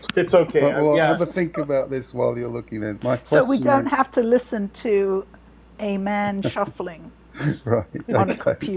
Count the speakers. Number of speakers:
3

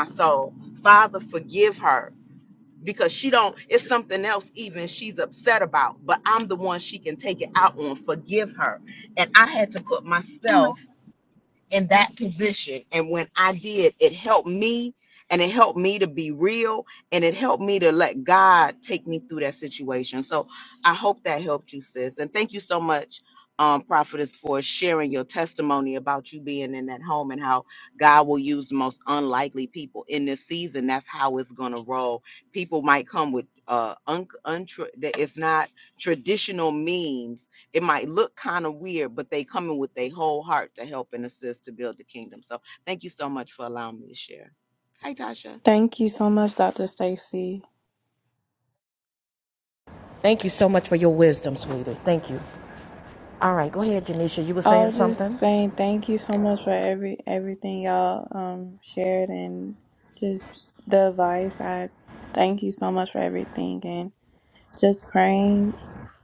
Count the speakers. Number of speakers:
3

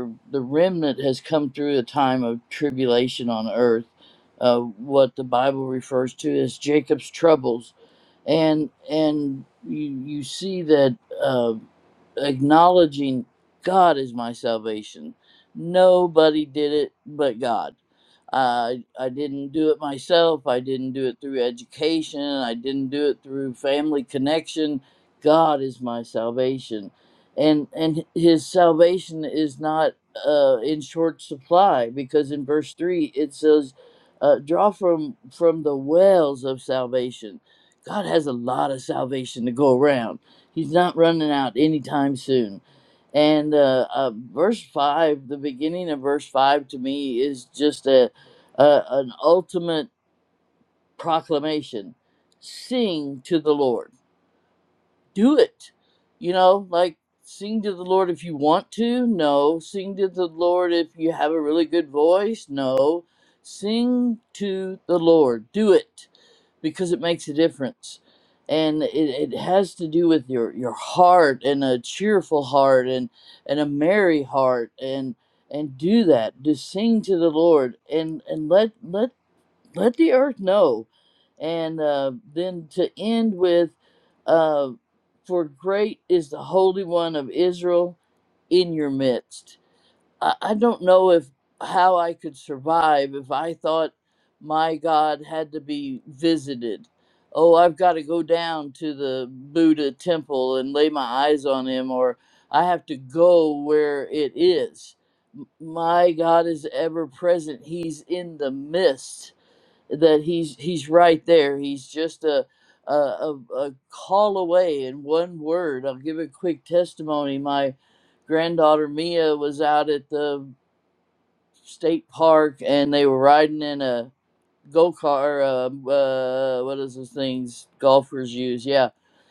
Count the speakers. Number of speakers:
1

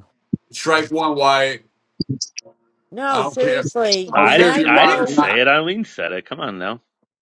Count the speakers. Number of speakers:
3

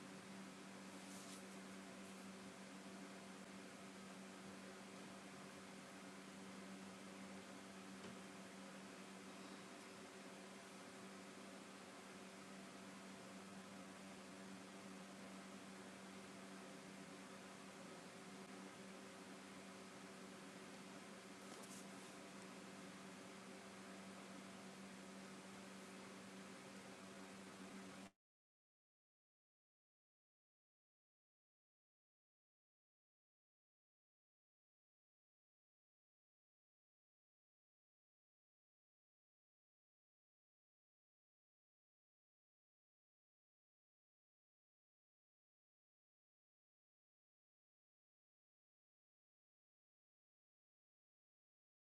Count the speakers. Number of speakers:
0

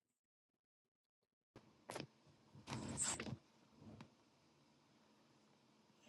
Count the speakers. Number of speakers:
0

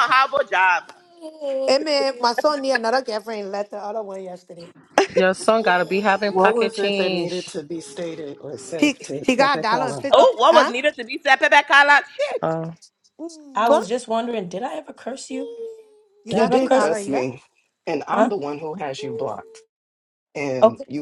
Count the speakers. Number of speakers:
5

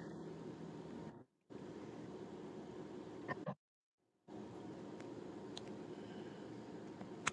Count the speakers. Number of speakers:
0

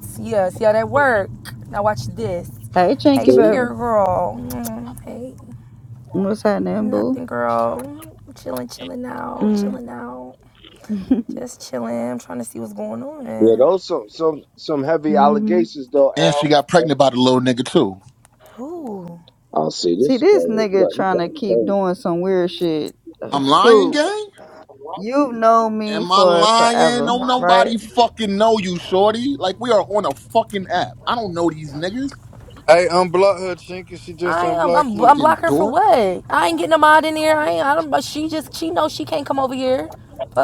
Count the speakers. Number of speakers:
5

